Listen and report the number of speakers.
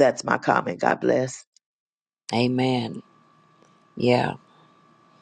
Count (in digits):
2